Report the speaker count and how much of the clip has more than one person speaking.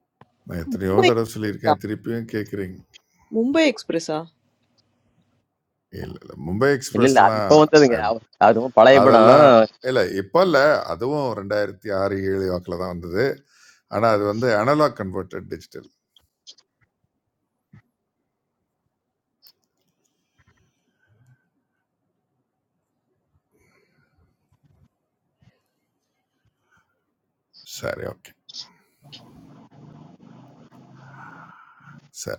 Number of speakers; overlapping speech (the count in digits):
3, about 5%